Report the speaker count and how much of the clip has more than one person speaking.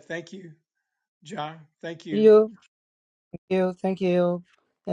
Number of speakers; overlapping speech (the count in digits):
2, about 3%